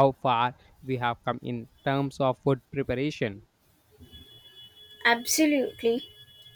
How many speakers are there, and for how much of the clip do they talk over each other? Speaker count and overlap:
two, no overlap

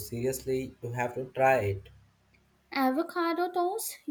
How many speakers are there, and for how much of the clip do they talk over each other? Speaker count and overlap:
two, no overlap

